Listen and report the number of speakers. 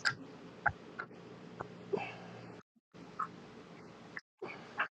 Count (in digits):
0